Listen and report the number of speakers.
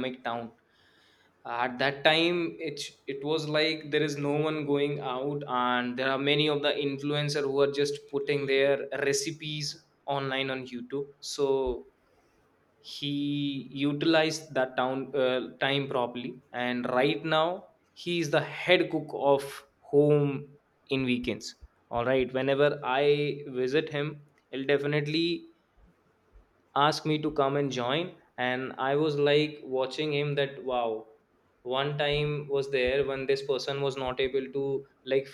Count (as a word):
one